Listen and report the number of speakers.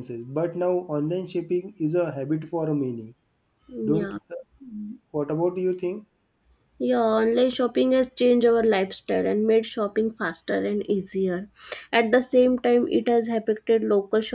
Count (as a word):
two